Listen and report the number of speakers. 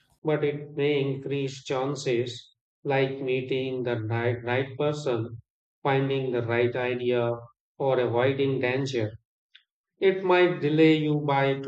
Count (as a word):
one